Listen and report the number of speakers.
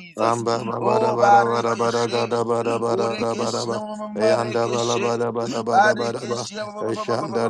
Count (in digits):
2